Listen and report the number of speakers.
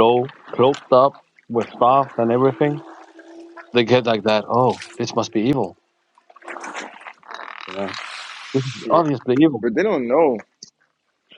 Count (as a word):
two